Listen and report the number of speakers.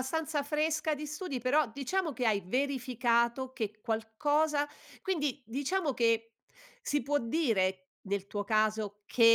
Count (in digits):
1